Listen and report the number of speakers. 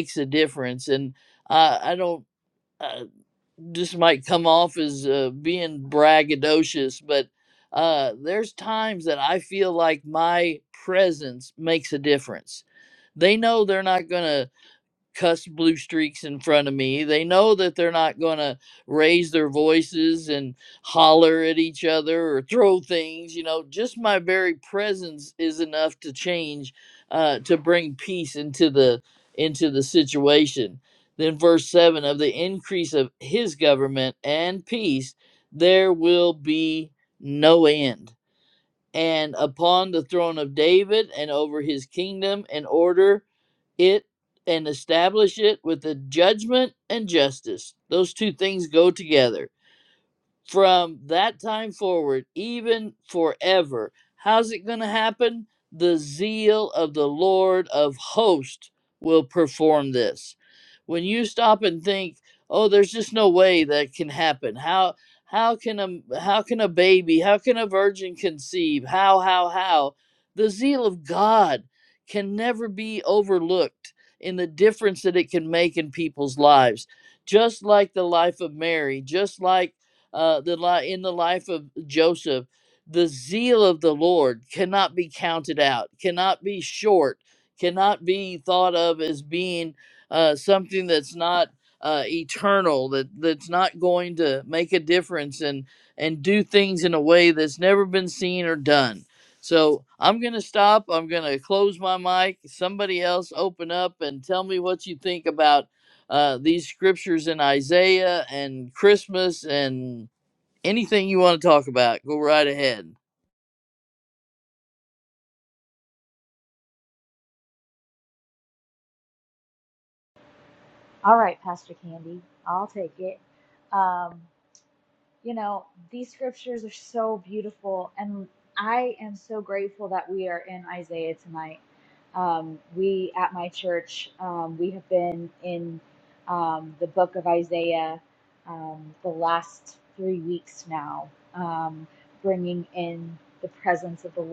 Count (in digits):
2